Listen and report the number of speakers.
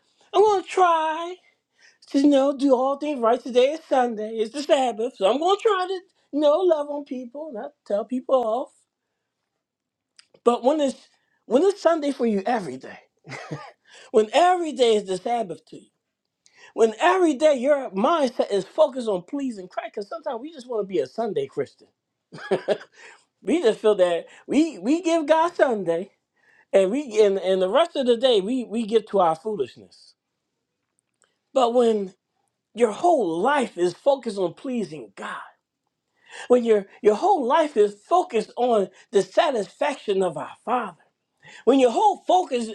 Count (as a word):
one